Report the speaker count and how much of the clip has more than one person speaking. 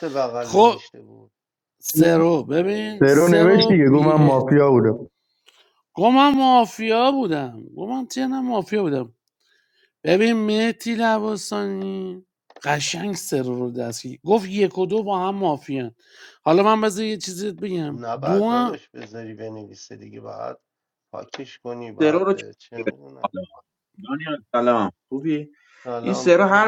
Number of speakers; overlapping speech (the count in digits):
4, about 14%